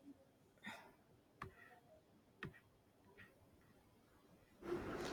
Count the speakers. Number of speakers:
zero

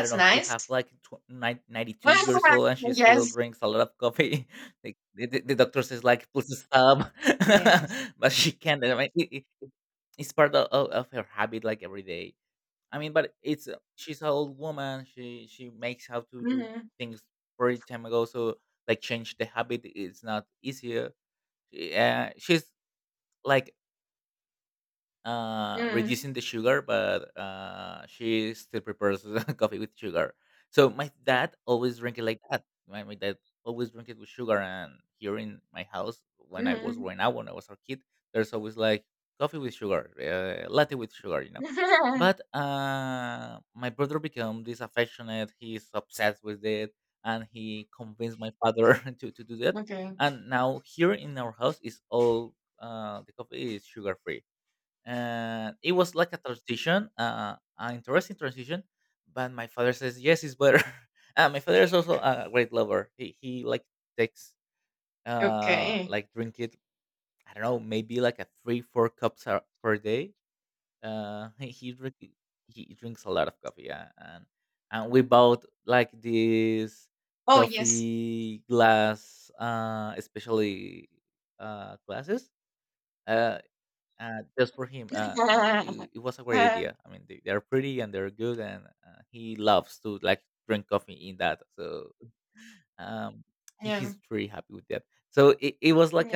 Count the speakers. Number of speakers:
two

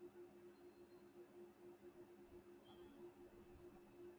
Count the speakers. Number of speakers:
zero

